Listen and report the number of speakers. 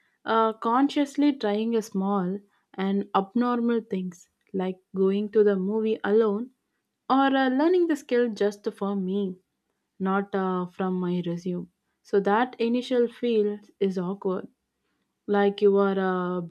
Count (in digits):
1